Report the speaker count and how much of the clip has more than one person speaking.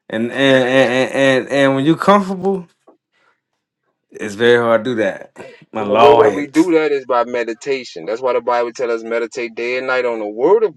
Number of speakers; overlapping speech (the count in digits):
2, about 6%